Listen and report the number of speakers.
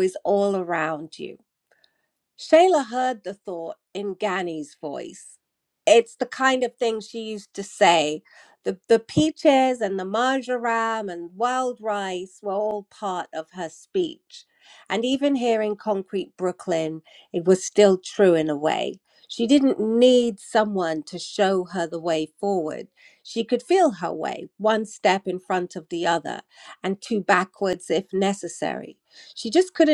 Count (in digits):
1